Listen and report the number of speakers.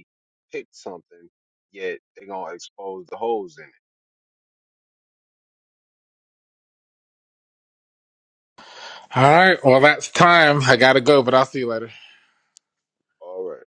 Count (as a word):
two